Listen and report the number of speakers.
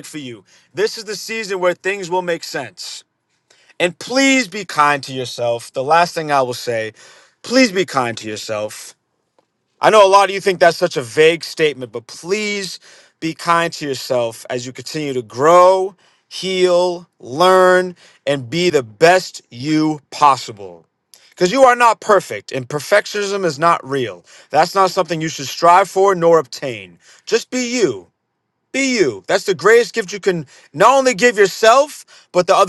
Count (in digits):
1